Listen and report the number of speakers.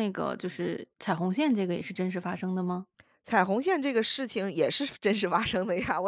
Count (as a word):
two